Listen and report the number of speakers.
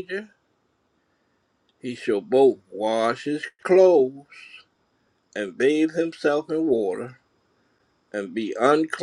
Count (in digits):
1